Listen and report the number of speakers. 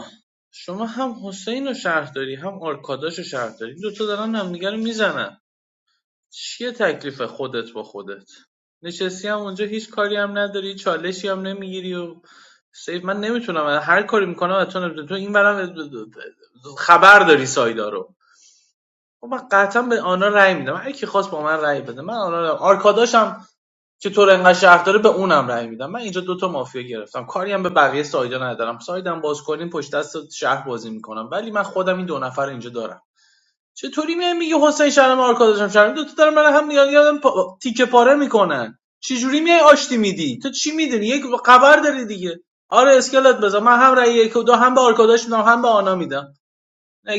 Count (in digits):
1